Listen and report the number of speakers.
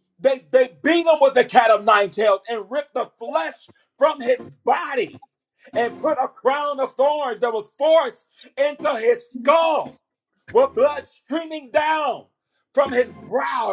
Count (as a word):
one